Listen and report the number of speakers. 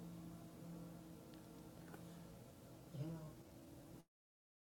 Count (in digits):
0